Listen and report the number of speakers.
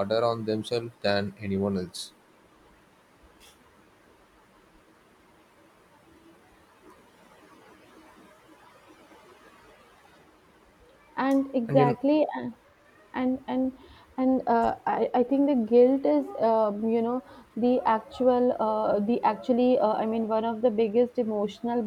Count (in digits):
2